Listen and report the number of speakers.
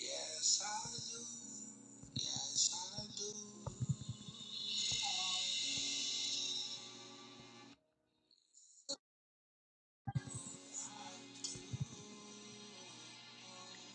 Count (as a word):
zero